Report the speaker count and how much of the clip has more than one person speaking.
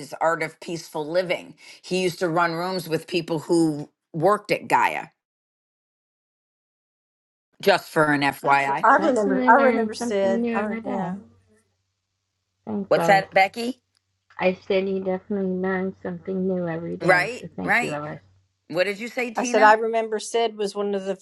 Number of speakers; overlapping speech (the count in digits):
3, about 18%